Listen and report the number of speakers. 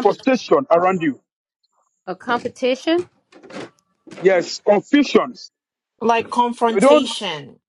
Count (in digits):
3